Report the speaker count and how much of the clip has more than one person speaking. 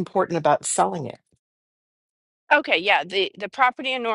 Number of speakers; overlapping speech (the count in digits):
2, no overlap